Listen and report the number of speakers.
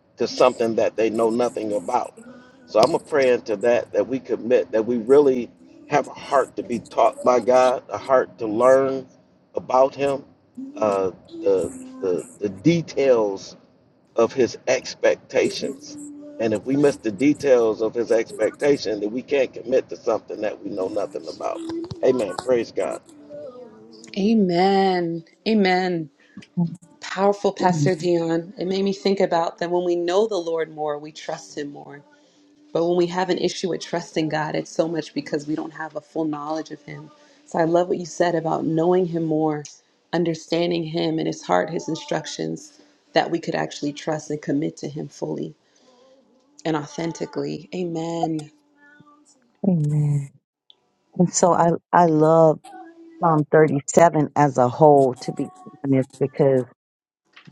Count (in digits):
3